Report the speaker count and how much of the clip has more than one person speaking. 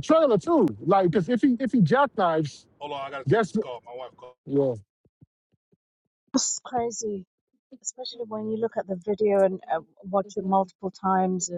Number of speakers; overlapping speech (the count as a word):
three, about 3%